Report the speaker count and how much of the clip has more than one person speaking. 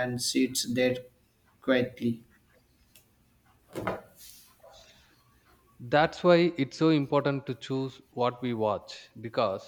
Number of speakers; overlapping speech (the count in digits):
2, no overlap